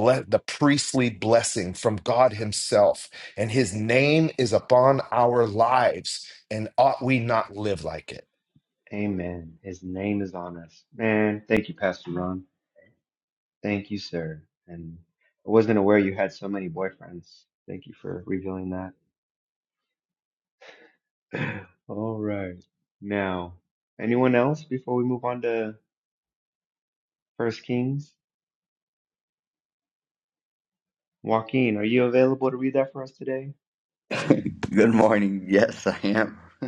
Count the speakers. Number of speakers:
3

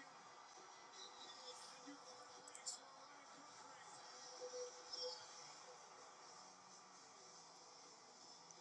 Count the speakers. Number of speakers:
0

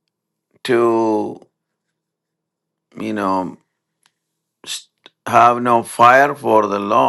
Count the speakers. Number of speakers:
1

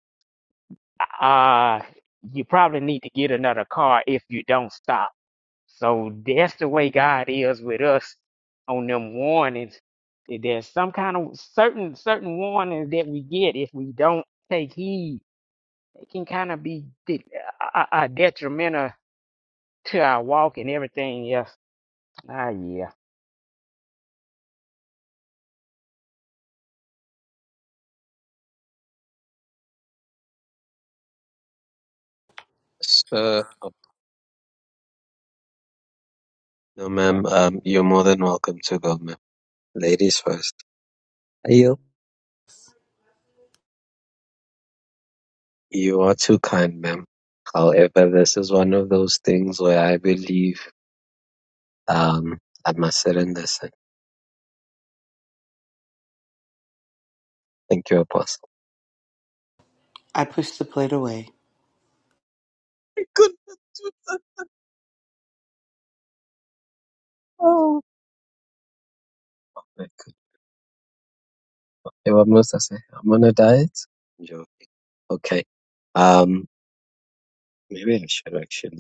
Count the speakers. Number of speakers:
3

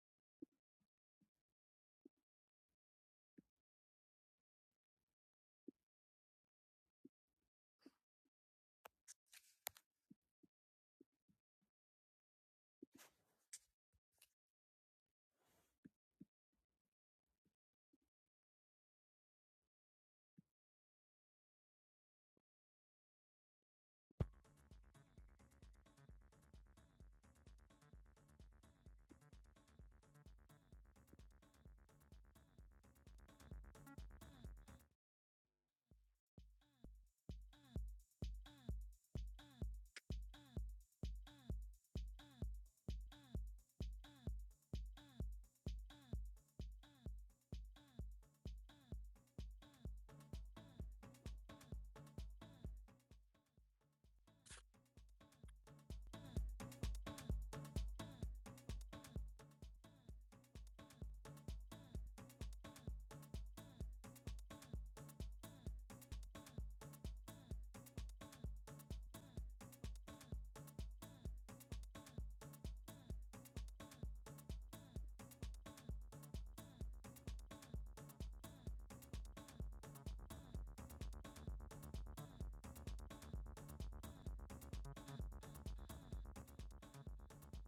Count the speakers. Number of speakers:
0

